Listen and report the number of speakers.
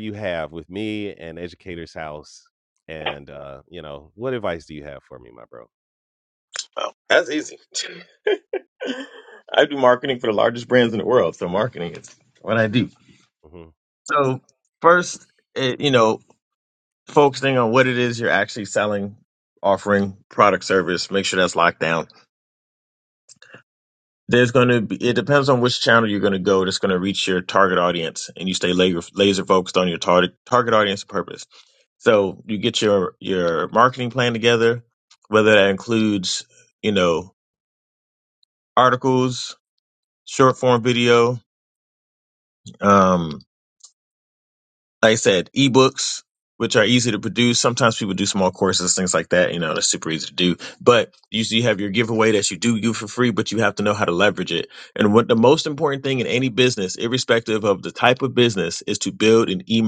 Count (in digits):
2